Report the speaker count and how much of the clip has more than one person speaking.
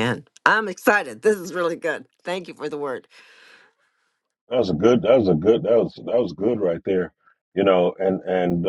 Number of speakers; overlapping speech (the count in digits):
2, no overlap